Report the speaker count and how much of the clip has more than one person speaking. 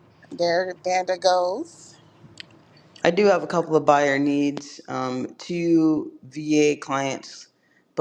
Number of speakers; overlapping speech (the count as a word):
two, no overlap